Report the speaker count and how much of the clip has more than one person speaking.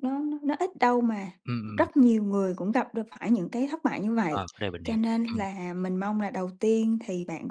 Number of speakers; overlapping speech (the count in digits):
2, about 11%